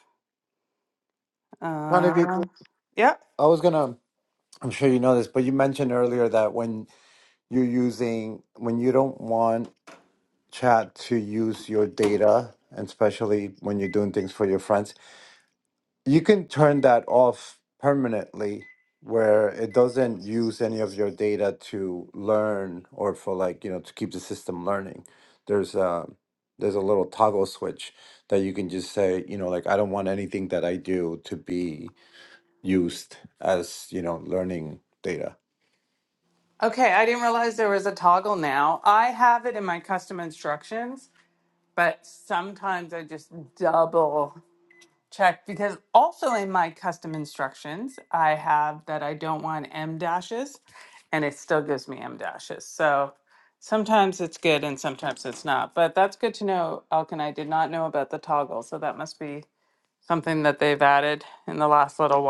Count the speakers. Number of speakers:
2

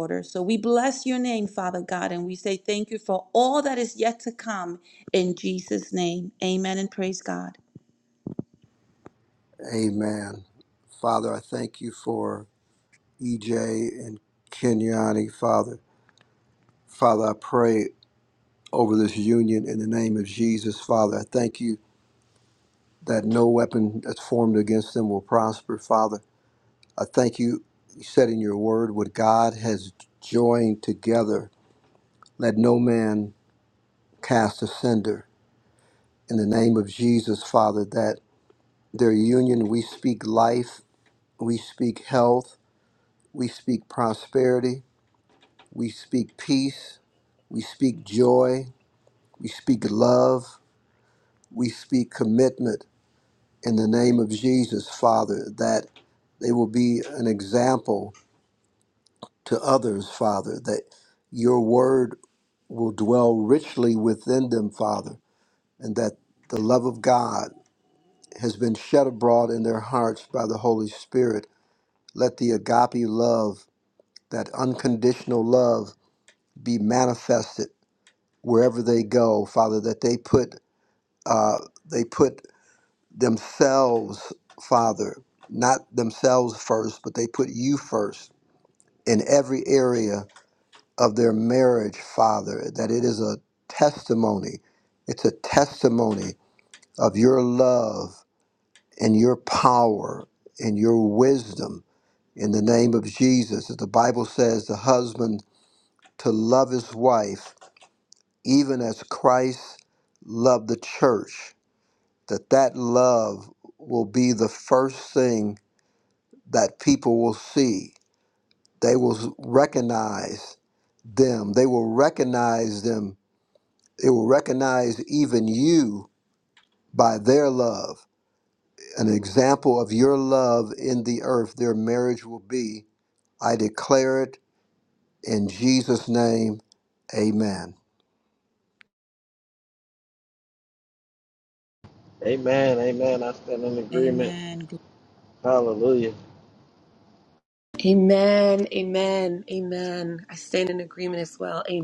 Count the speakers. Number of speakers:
4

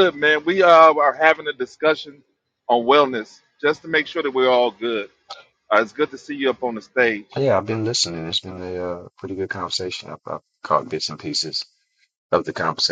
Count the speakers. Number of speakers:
2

